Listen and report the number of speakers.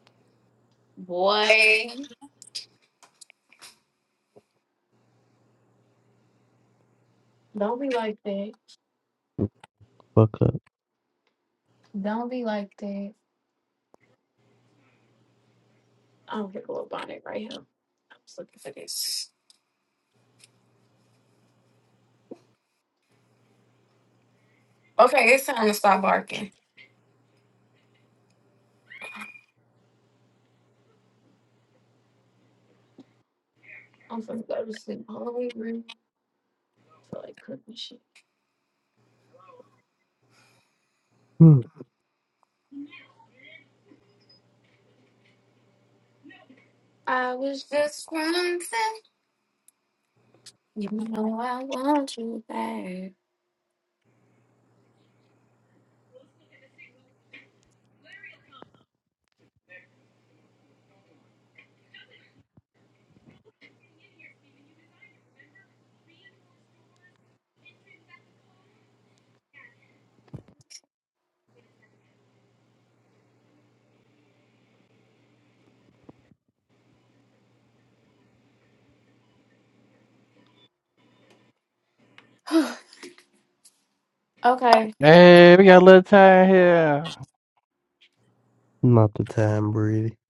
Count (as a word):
three